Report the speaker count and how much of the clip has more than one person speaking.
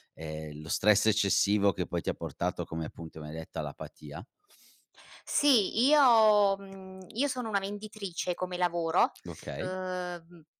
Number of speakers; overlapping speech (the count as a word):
two, about 1%